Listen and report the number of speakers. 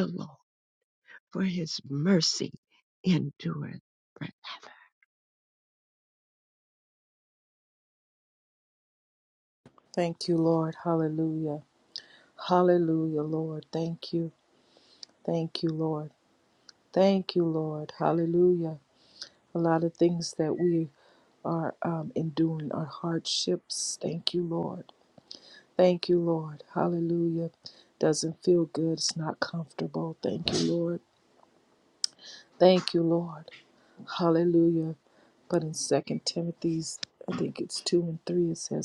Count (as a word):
two